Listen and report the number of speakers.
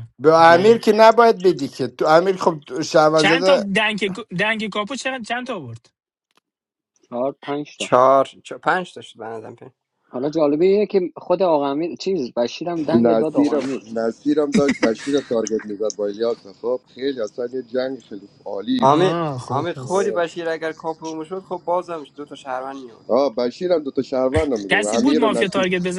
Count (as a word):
five